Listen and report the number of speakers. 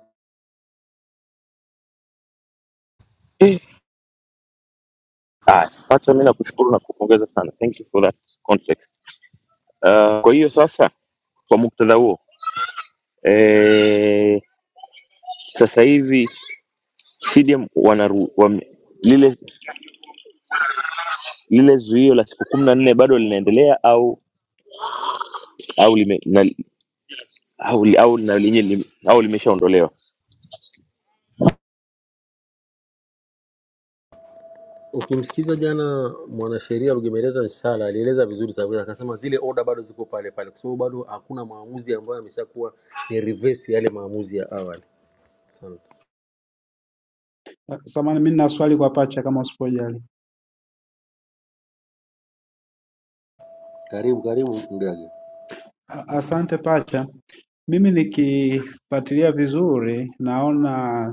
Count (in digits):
3